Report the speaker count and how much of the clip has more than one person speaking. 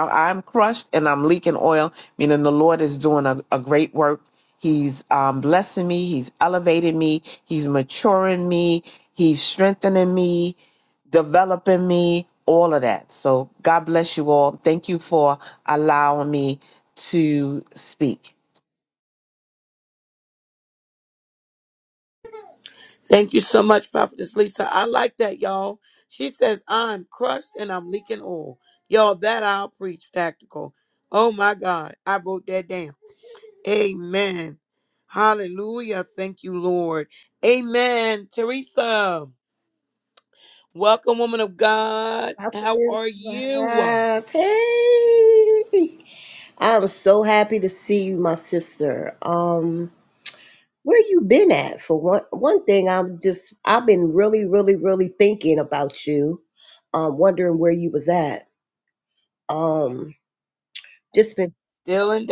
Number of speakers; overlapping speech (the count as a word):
three, about 3%